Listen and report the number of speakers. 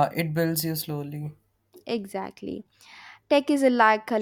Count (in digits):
2